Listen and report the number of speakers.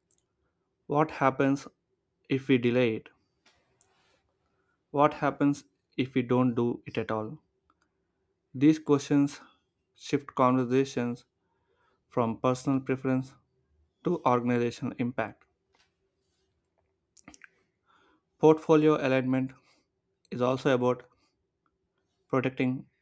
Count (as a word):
one